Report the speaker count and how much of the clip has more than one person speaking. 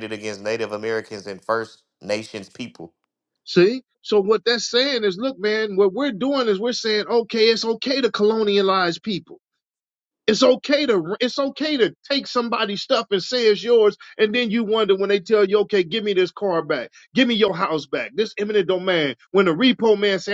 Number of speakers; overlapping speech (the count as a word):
two, no overlap